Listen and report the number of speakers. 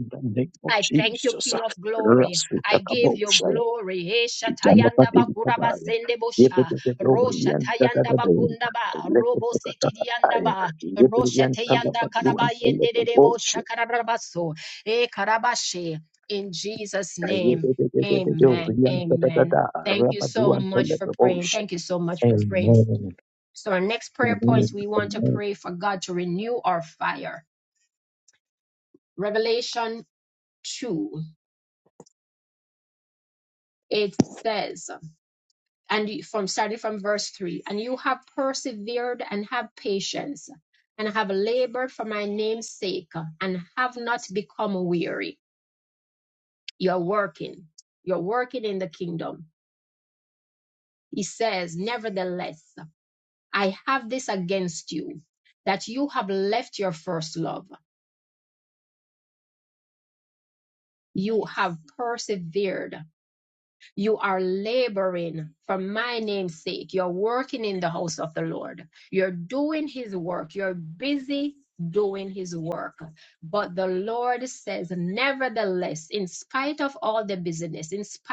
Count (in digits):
2